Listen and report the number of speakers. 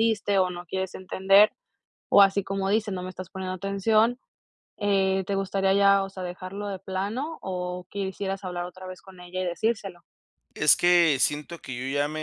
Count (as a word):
two